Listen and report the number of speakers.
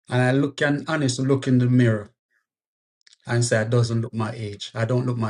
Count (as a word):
one